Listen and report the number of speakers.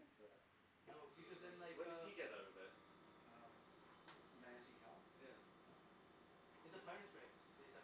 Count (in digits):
3